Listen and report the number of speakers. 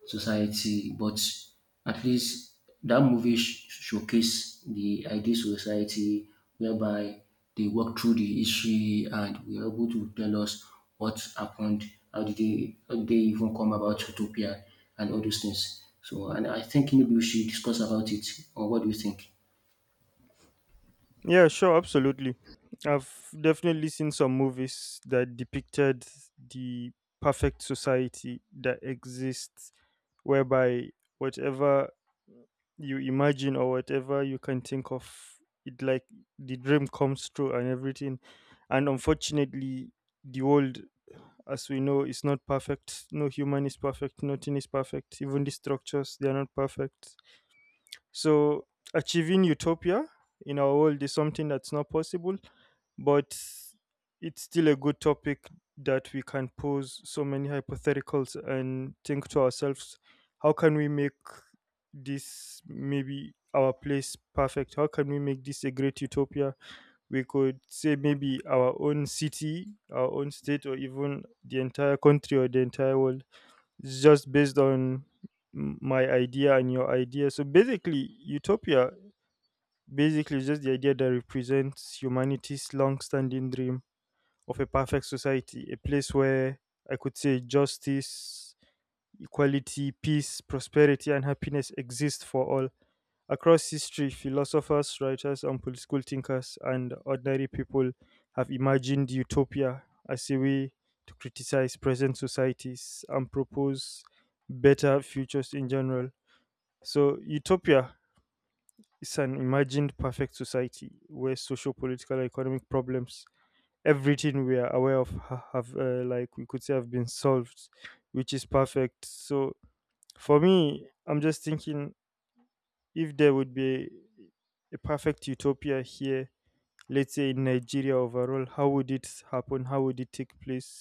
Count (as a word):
two